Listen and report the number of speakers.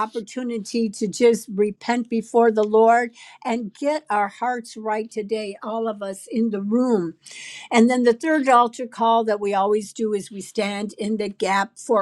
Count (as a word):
one